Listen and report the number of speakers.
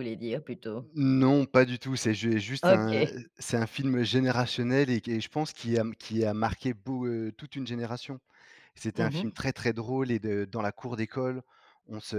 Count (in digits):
2